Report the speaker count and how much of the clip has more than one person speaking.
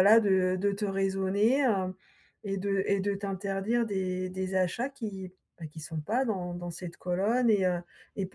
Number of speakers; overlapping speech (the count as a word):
one, no overlap